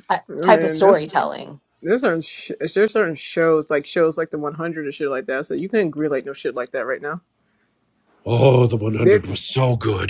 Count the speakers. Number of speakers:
3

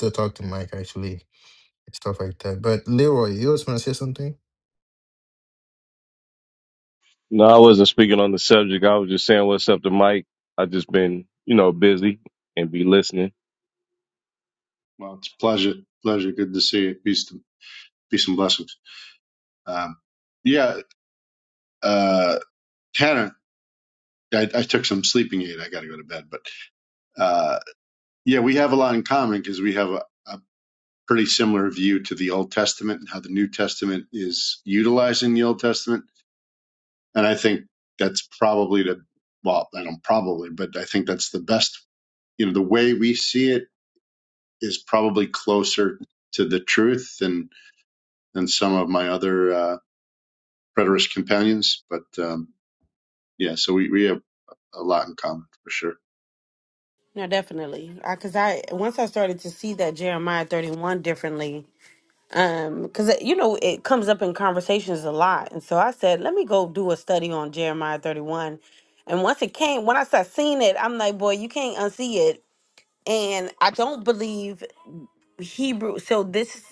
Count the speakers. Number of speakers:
4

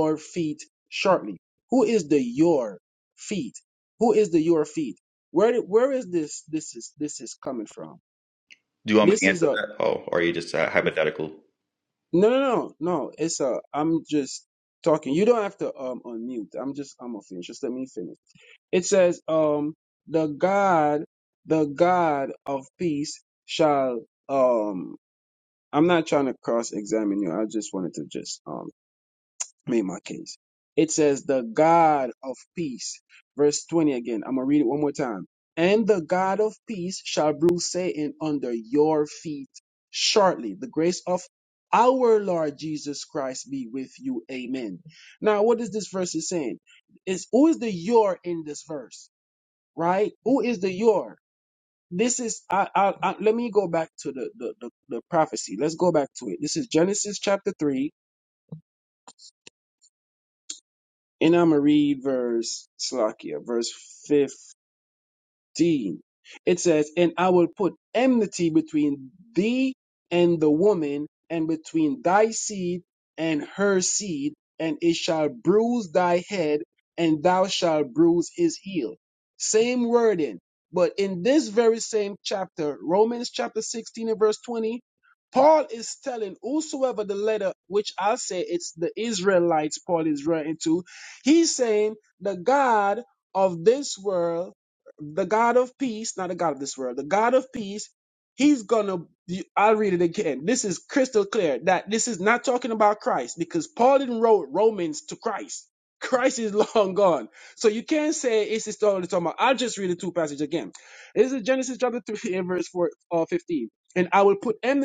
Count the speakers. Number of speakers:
2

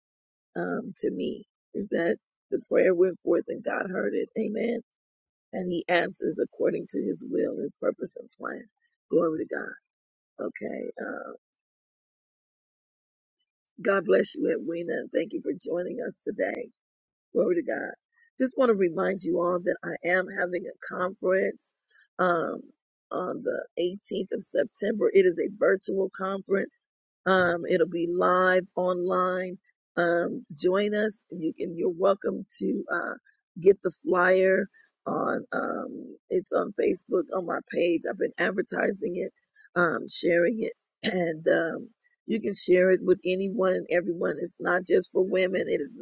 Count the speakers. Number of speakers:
1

